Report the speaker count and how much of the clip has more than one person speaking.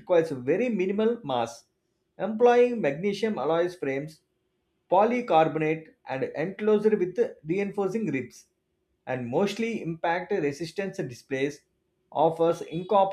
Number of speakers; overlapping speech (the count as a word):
one, no overlap